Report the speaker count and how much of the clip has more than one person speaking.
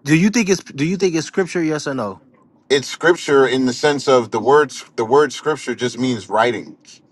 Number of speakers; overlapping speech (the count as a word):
two, no overlap